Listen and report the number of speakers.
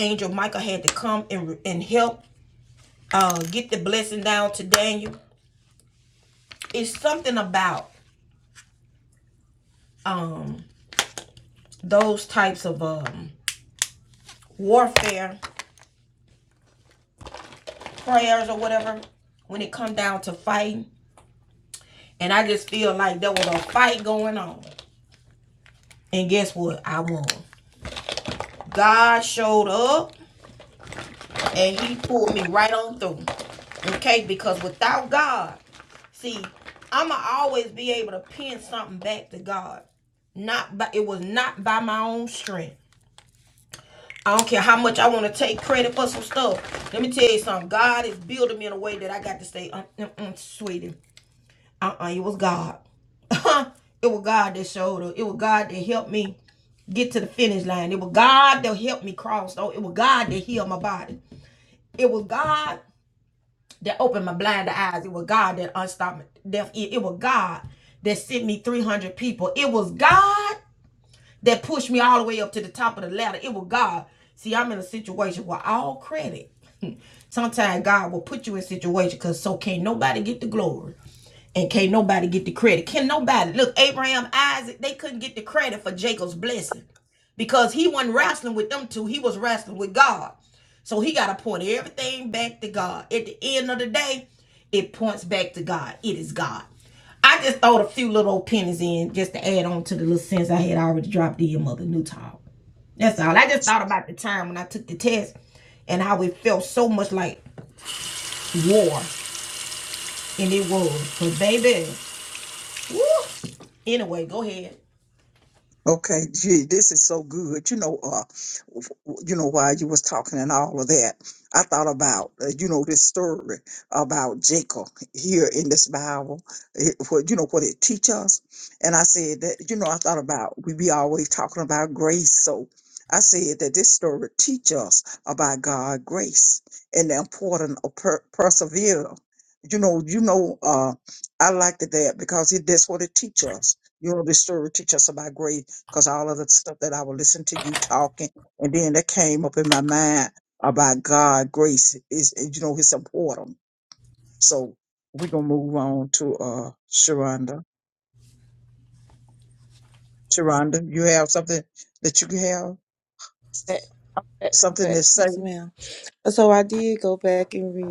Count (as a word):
three